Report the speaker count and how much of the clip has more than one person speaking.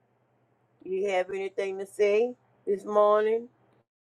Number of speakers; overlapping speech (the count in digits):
1, no overlap